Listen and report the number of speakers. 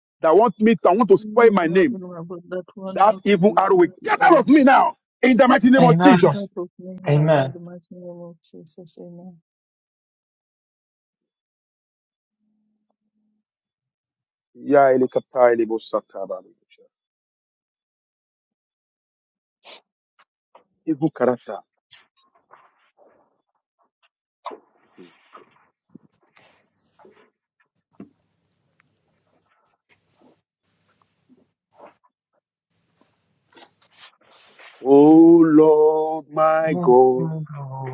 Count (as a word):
three